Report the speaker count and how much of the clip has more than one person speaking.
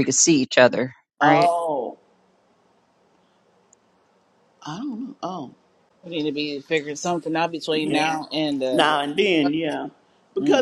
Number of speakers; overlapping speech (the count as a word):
three, about 10%